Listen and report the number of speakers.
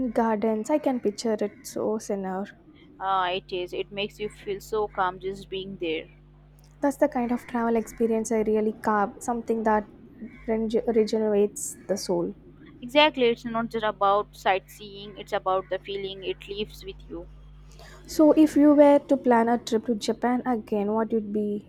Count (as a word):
two